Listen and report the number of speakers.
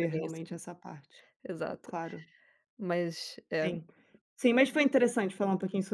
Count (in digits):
2